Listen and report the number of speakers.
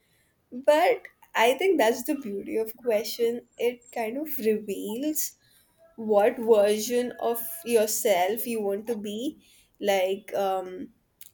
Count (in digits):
1